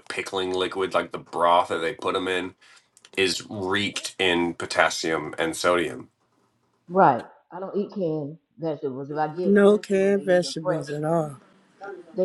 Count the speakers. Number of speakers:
3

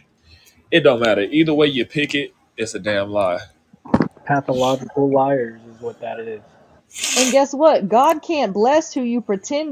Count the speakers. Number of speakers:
3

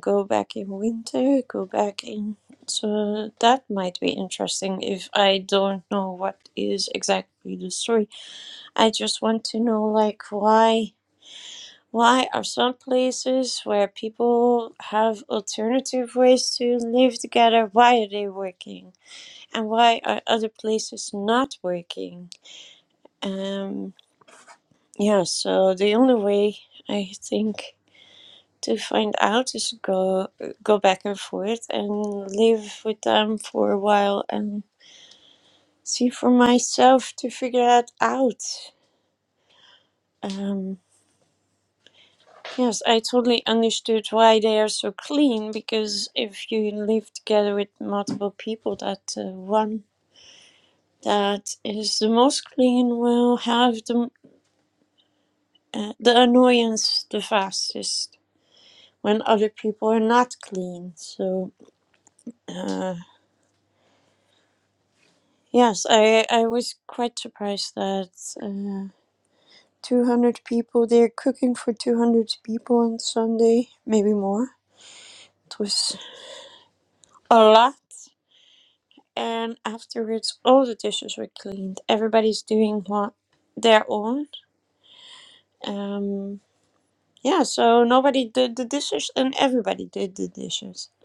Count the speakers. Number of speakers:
1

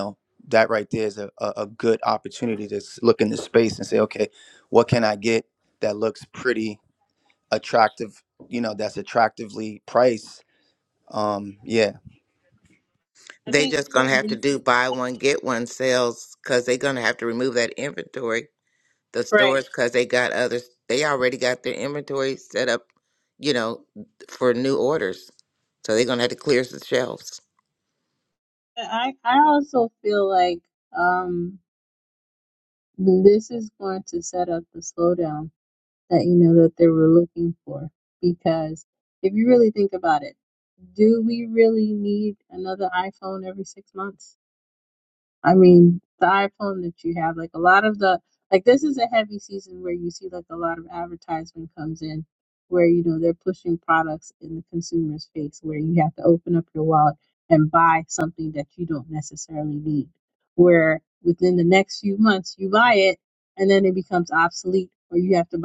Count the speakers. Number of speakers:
3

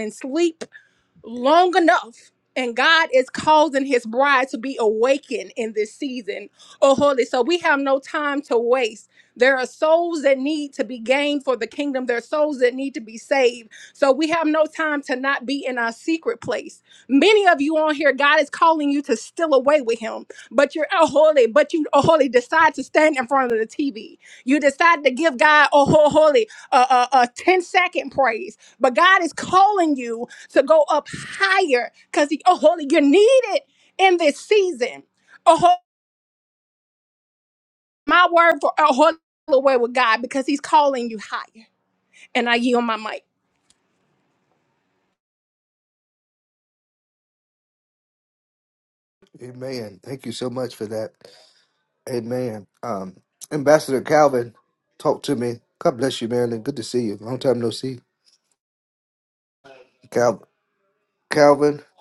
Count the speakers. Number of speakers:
2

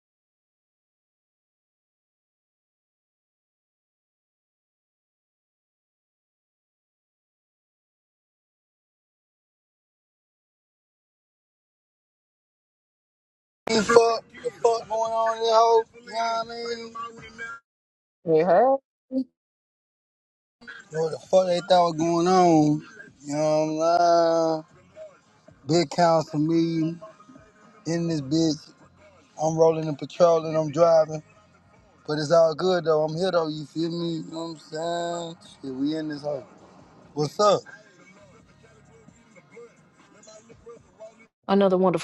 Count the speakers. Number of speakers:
2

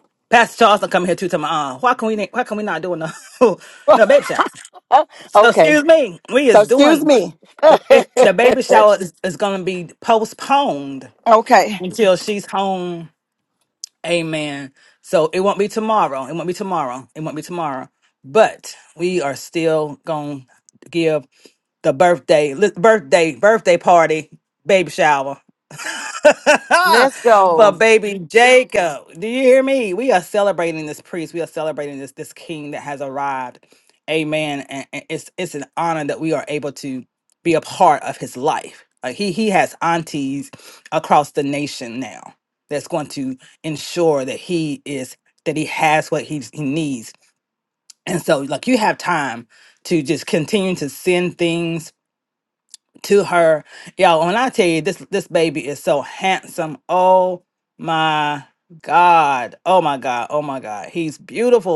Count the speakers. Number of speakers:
2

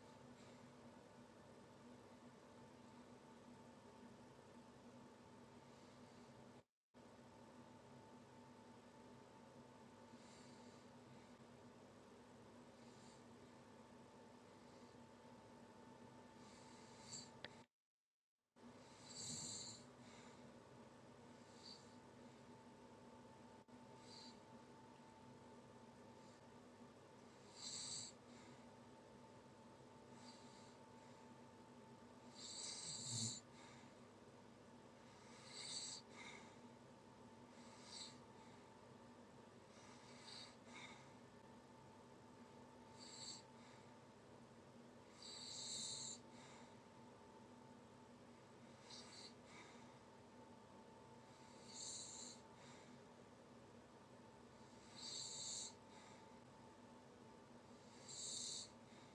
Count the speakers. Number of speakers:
0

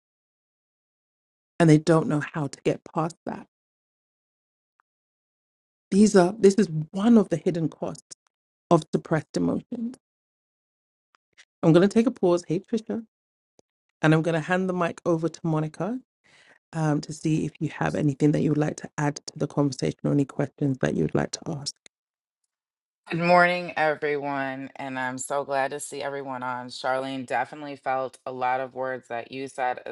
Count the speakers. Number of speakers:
2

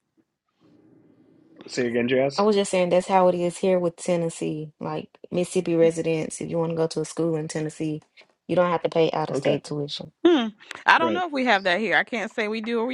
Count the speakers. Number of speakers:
3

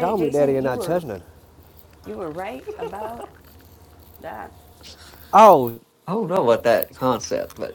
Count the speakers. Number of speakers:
3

